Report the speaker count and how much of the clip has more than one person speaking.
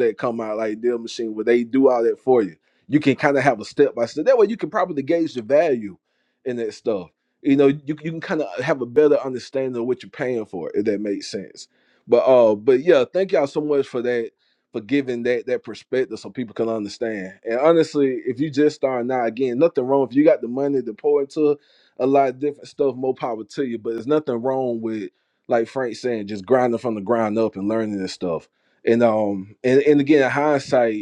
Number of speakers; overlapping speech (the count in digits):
1, no overlap